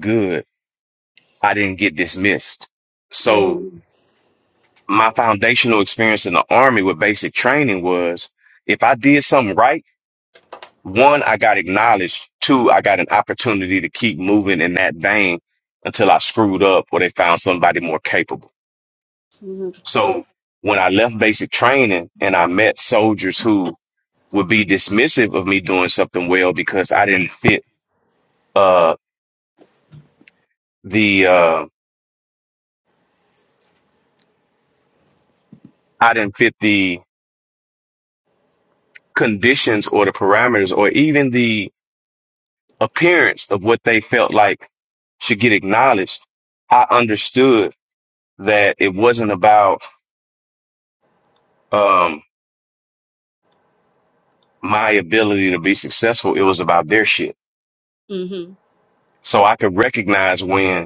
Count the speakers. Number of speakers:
2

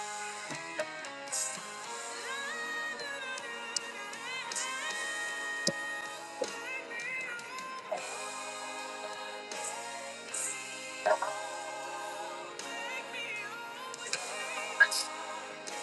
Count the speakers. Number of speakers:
0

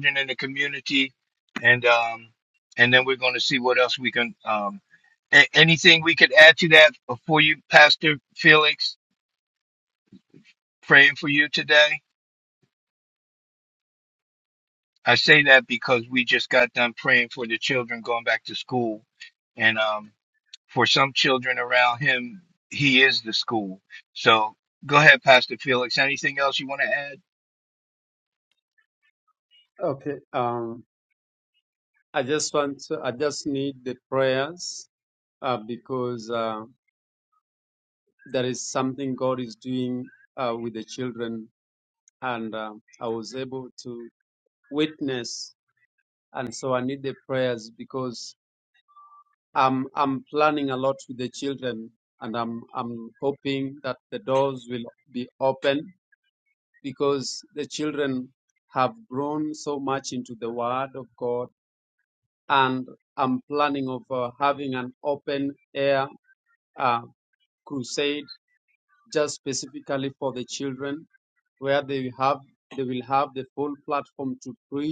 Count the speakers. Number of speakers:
2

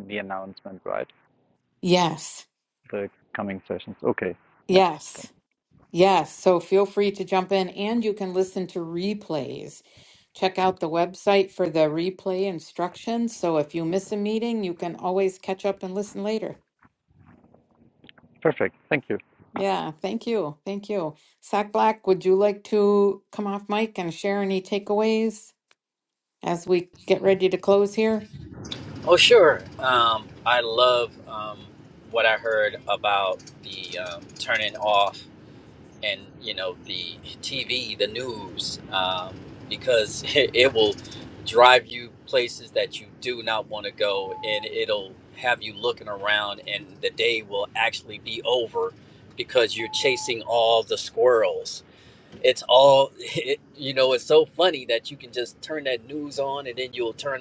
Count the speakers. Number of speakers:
3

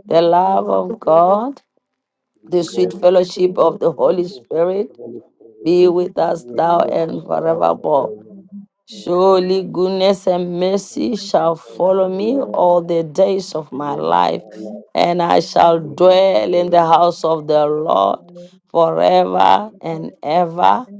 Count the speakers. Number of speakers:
3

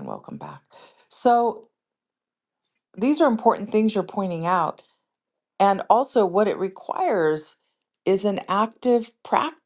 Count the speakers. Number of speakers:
1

